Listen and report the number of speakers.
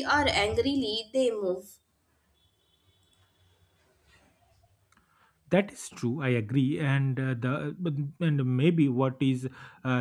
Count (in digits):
2